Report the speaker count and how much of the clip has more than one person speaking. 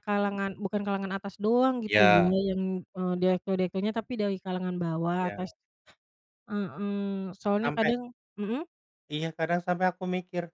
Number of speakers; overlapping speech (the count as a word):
two, about 13%